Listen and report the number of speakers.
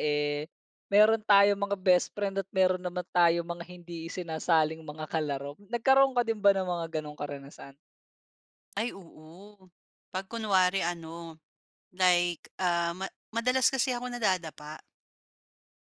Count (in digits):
2